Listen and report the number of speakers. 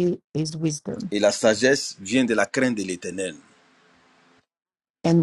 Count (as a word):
two